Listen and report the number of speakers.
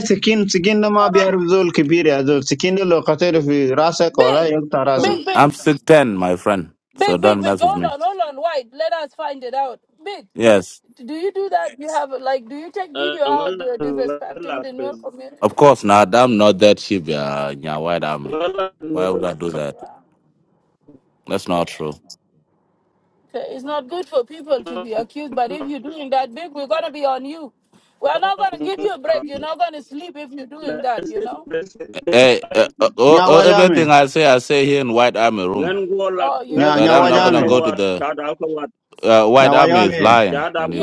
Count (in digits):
4